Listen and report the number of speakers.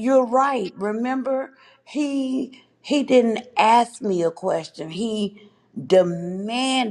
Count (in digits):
1